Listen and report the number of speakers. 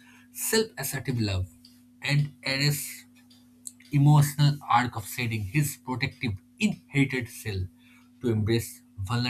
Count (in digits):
1